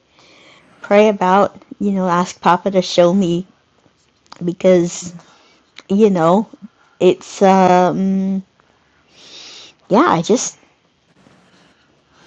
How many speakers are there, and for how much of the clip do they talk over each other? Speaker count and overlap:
1, no overlap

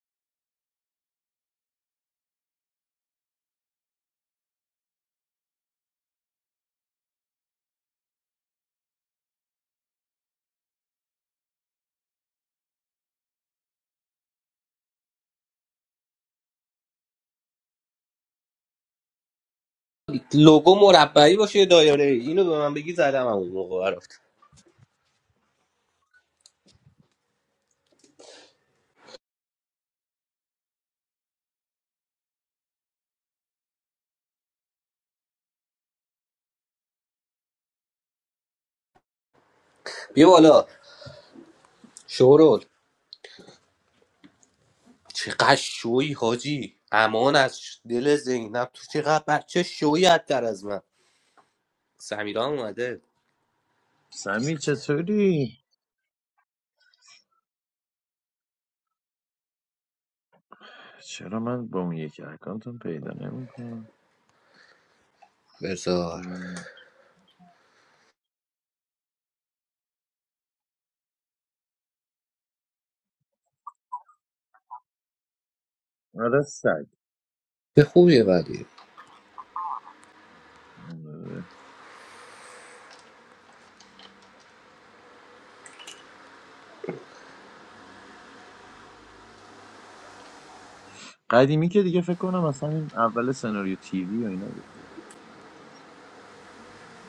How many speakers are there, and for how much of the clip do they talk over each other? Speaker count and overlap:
2, no overlap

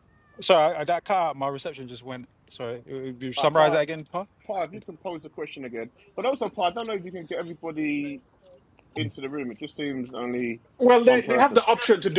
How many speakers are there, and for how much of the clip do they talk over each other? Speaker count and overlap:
3, about 8%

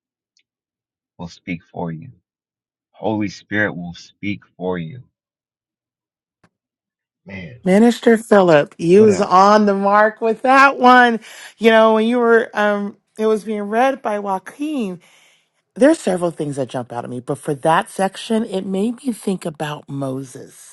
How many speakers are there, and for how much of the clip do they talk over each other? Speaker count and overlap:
2, about 2%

